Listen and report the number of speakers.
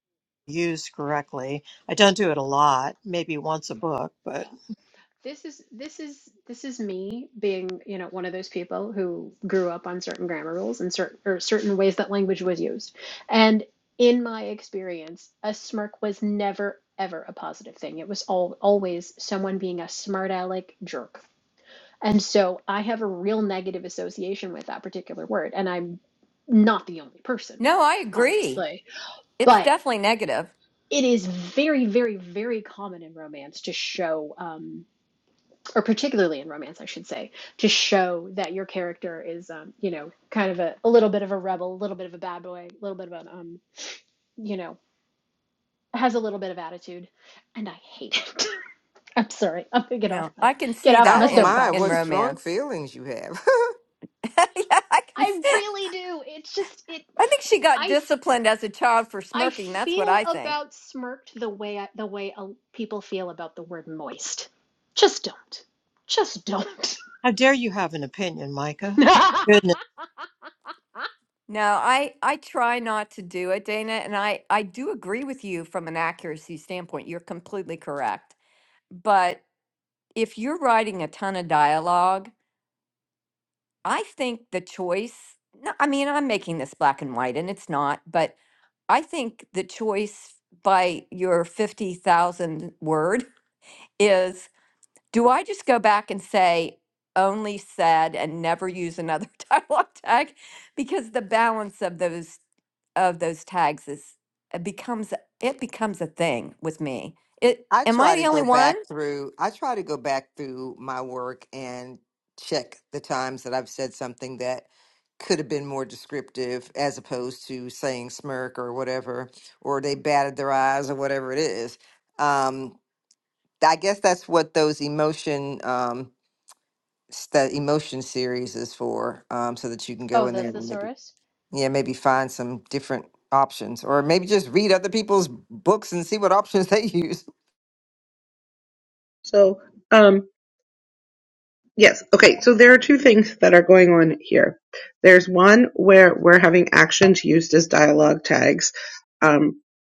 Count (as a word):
five